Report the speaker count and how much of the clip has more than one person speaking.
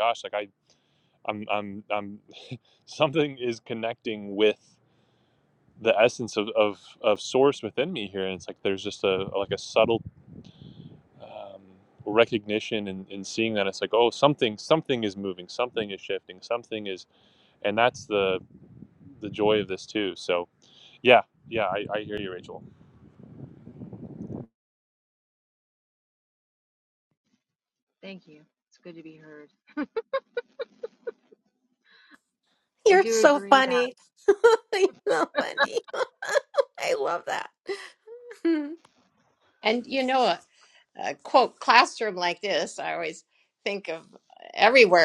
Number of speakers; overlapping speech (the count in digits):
4, about 2%